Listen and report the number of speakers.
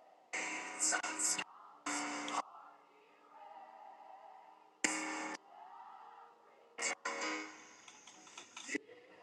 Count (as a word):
zero